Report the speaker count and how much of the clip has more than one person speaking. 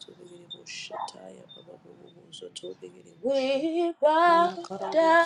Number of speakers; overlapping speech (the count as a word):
two, about 26%